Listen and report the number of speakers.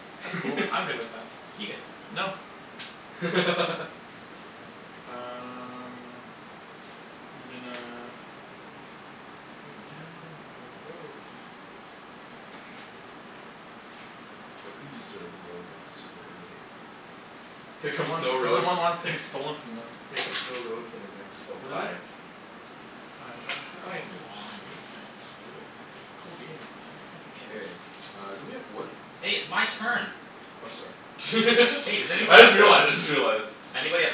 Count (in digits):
3